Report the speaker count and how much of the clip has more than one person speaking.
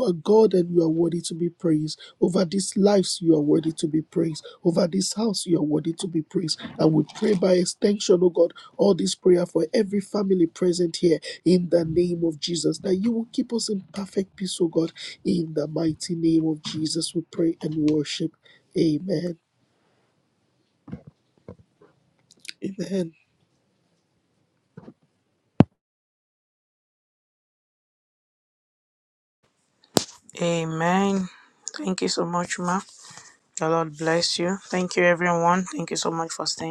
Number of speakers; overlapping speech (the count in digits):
2, no overlap